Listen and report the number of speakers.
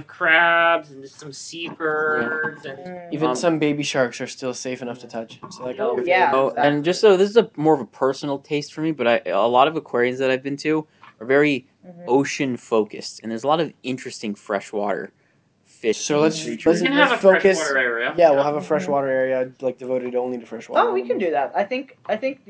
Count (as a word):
four